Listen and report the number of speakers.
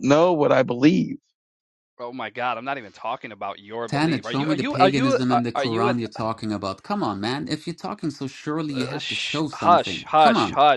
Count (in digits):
3